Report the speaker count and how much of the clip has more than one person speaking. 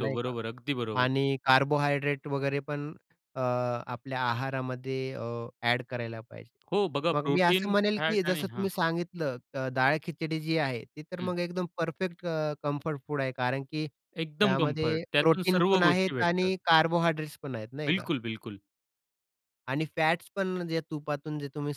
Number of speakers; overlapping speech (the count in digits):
2, about 20%